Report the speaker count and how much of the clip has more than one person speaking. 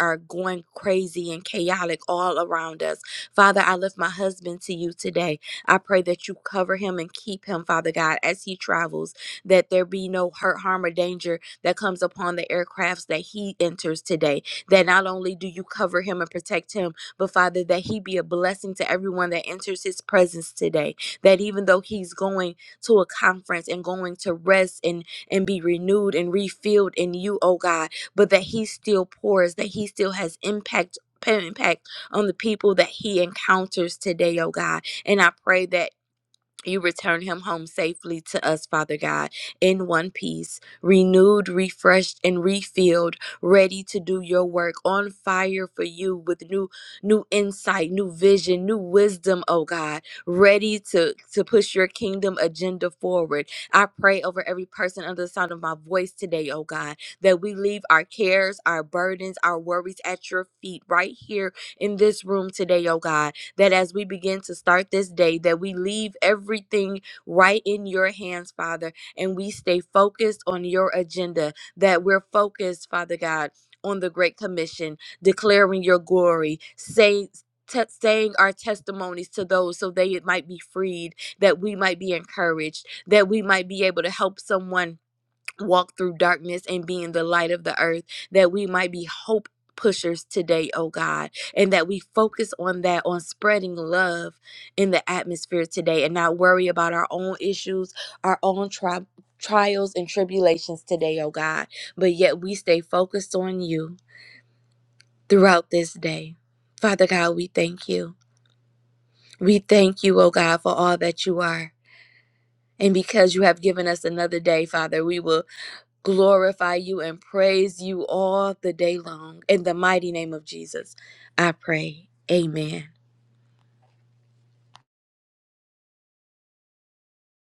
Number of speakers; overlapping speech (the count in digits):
1, no overlap